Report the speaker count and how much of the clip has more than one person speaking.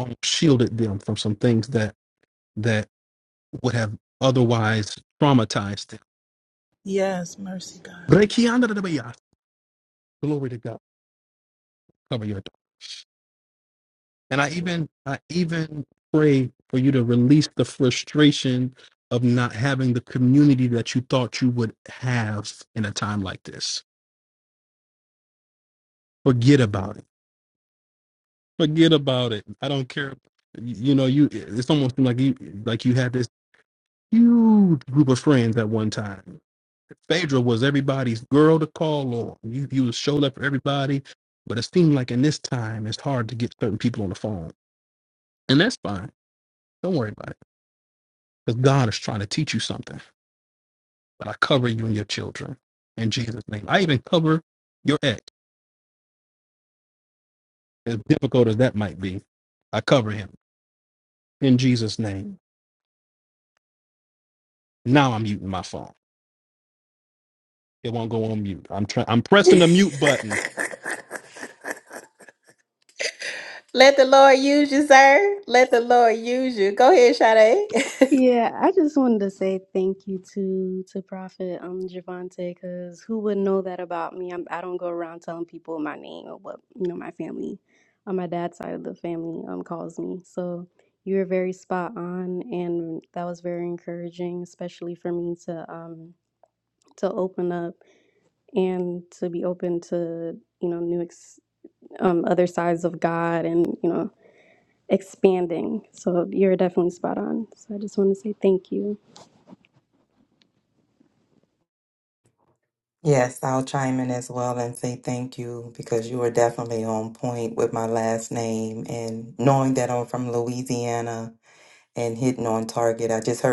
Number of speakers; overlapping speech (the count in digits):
5, under 1%